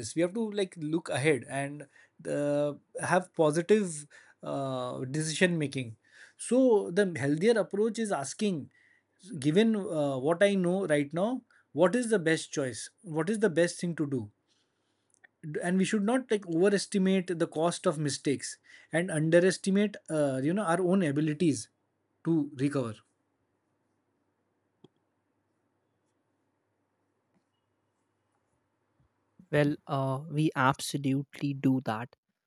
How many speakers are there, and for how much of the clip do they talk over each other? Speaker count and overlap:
2, no overlap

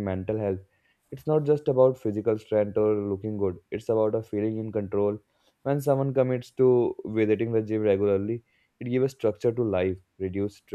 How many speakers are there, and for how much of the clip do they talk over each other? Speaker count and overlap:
1, no overlap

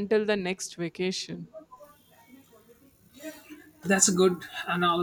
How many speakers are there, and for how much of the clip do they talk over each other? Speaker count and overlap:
2, no overlap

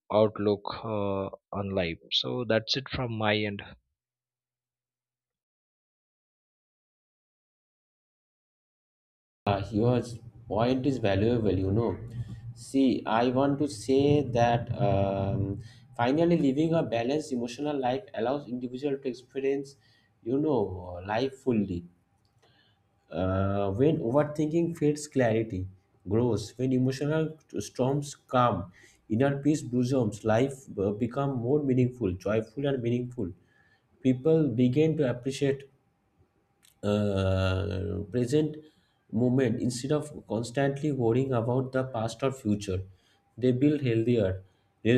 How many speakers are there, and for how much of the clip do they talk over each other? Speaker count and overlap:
2, no overlap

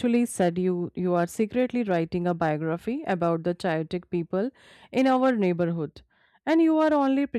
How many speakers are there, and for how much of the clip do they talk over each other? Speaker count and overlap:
1, no overlap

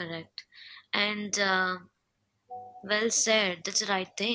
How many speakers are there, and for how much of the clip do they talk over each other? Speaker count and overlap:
1, no overlap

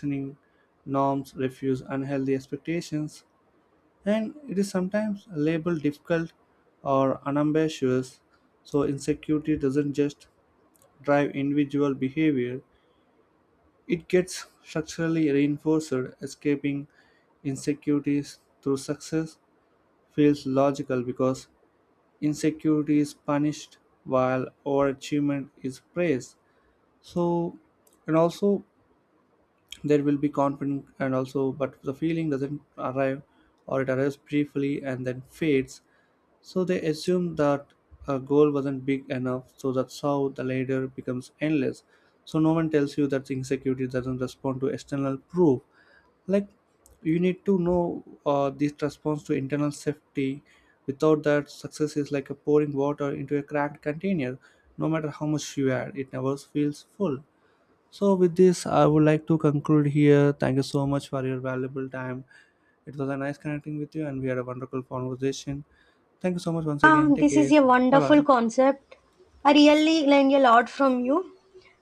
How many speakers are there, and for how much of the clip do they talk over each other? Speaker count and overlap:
2, about 1%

